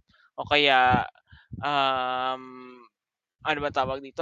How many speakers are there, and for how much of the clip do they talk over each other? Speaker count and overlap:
1, no overlap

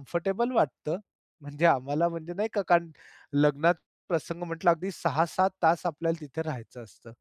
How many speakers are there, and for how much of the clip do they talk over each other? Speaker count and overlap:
1, no overlap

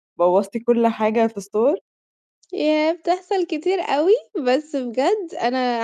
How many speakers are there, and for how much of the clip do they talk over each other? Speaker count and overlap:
2, no overlap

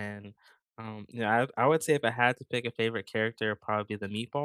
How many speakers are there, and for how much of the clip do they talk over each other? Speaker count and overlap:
1, no overlap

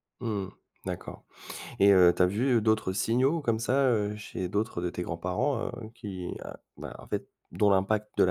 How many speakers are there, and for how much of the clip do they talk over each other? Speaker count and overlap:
1, no overlap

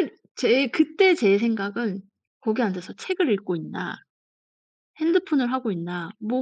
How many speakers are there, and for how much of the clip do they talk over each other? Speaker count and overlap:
1, no overlap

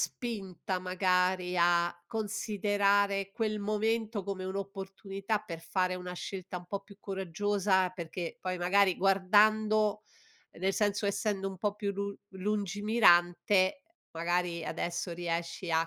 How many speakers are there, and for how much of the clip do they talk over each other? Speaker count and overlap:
1, no overlap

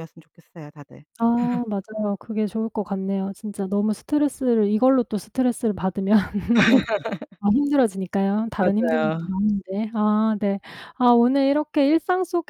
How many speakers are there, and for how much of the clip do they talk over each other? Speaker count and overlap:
2, about 6%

